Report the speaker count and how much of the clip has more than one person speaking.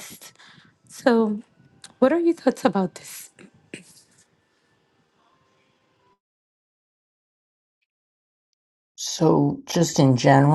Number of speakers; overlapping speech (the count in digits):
2, no overlap